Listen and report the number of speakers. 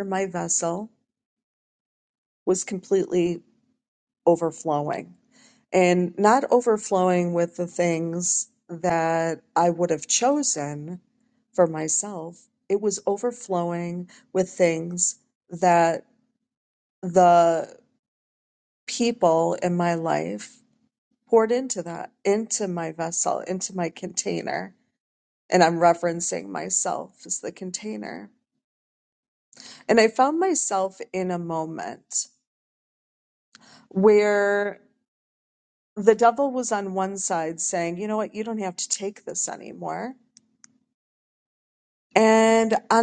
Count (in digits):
1